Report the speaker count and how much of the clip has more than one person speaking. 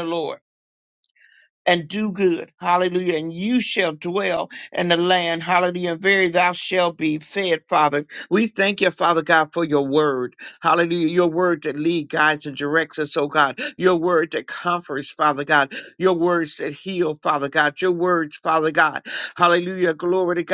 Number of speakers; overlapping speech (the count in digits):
1, no overlap